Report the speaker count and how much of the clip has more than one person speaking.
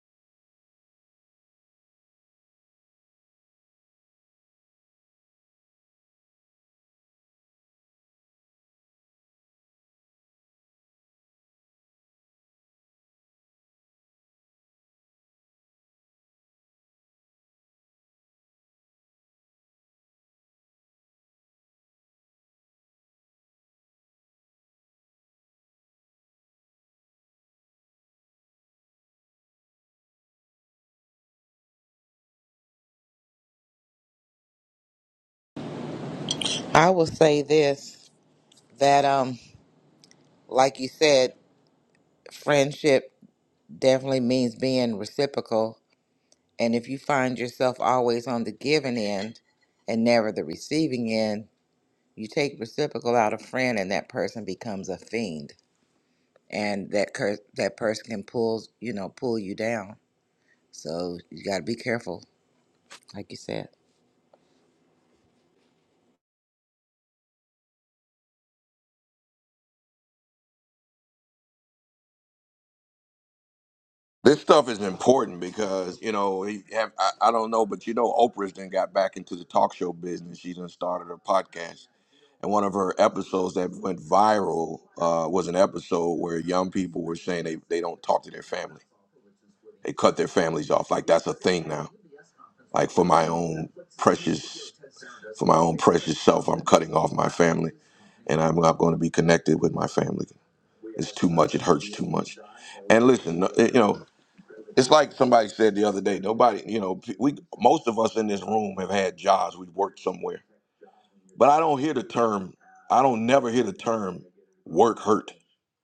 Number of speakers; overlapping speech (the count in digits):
2, no overlap